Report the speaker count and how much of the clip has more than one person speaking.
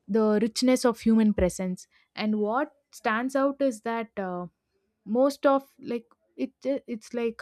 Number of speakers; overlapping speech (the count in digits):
1, no overlap